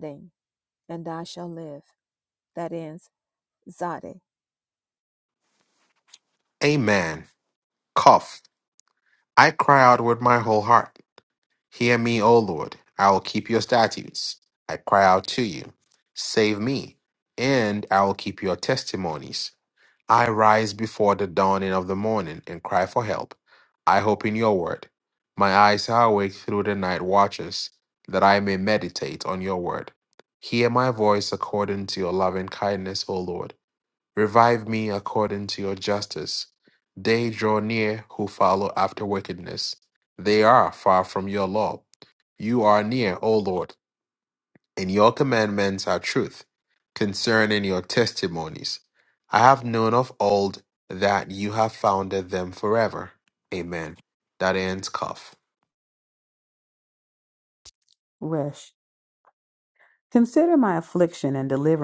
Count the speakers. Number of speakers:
3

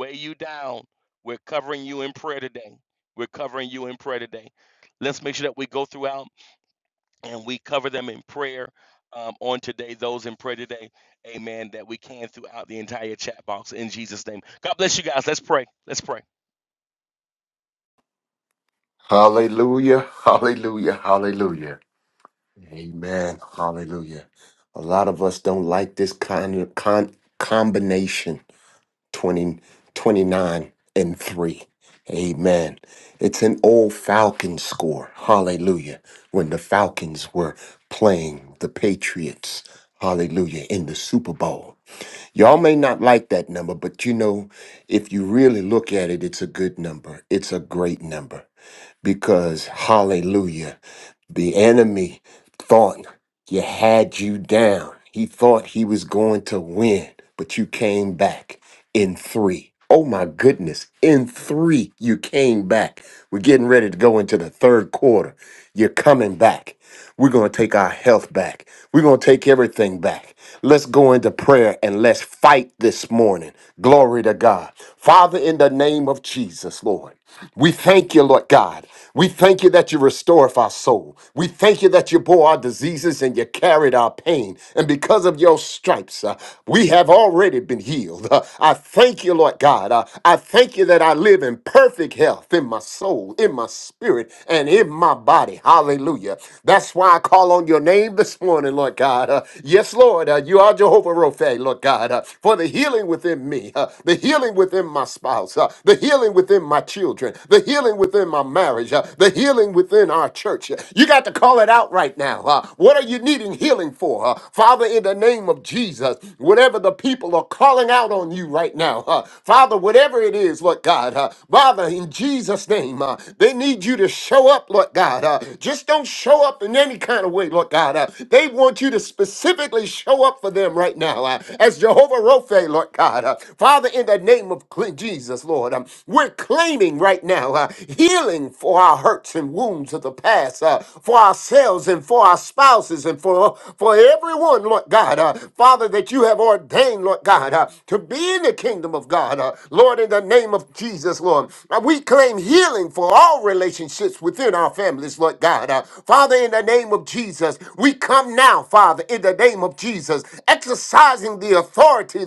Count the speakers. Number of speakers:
2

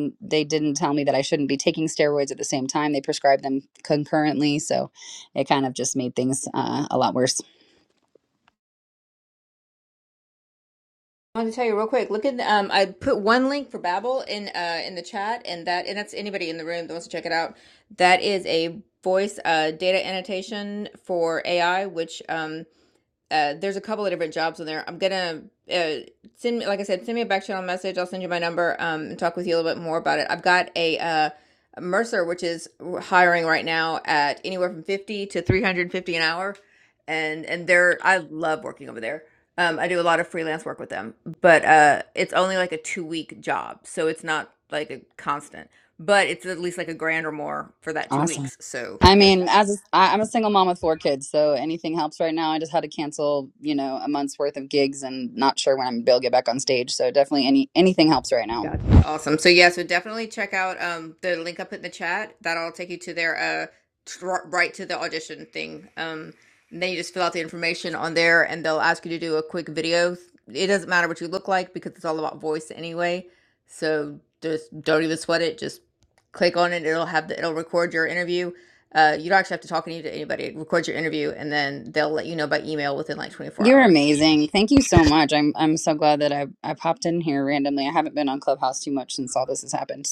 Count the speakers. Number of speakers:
2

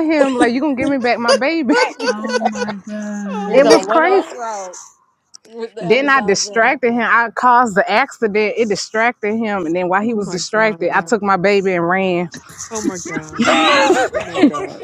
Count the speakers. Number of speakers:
4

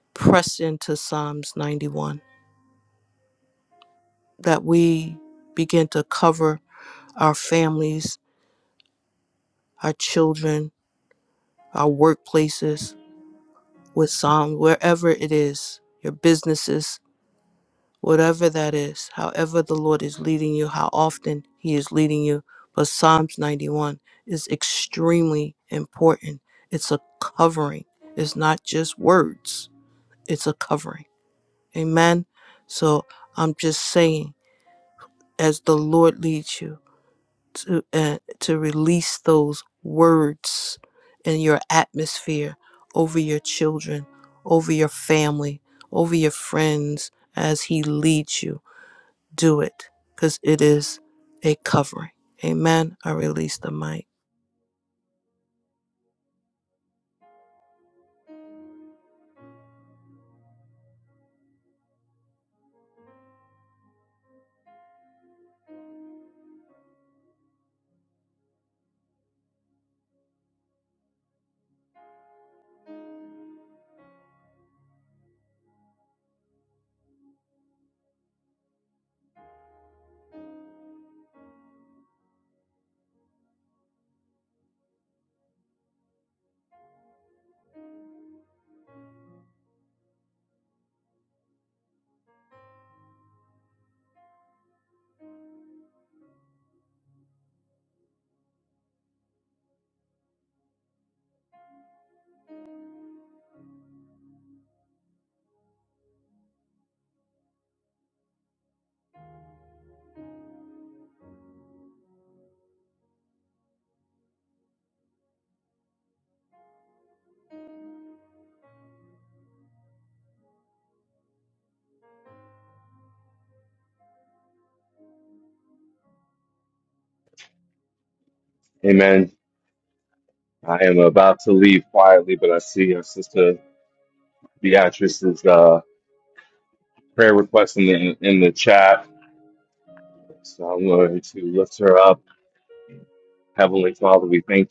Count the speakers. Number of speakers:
2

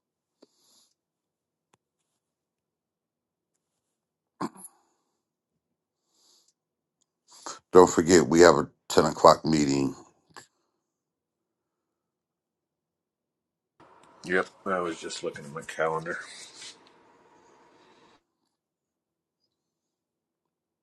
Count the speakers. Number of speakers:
2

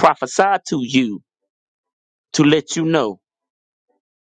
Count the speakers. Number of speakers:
1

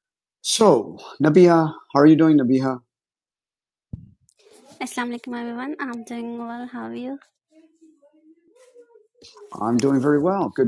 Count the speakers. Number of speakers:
2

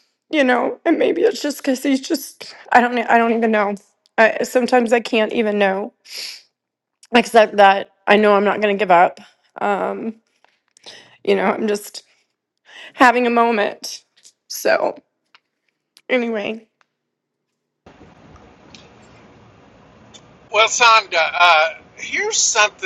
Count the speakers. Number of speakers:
2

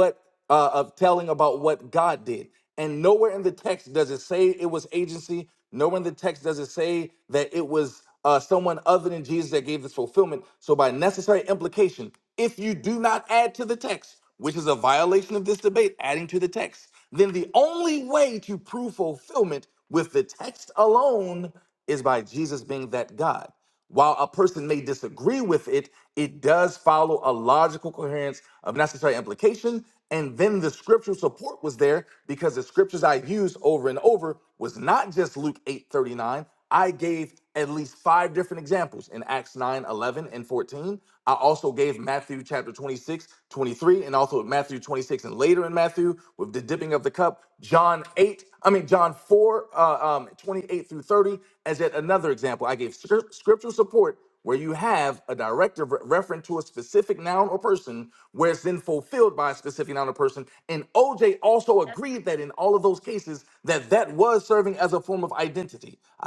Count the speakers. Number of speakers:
1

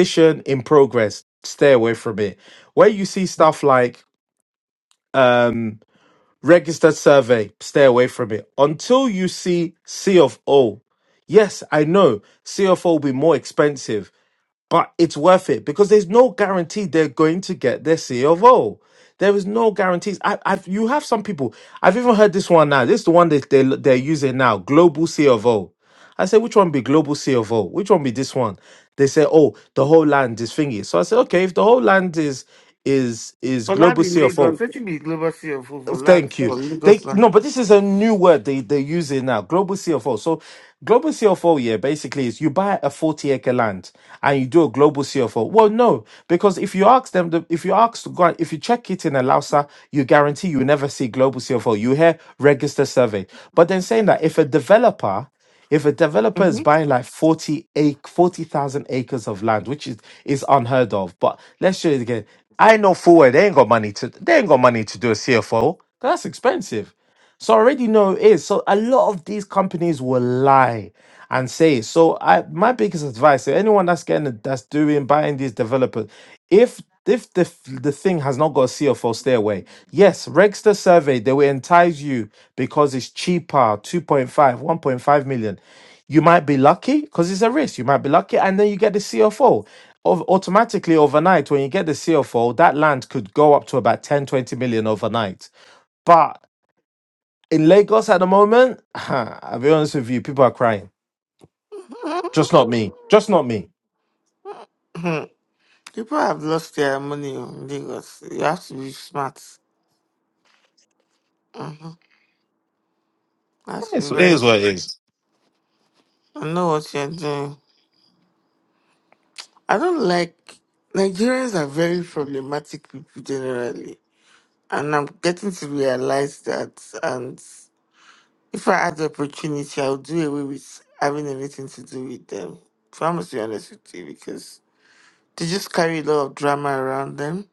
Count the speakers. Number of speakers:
2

